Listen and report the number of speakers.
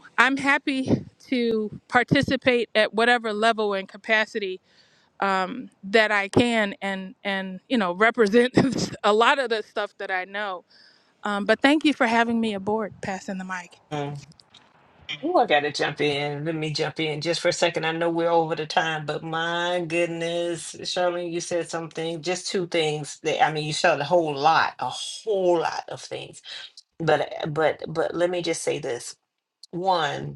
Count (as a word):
two